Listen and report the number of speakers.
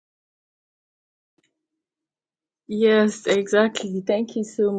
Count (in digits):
1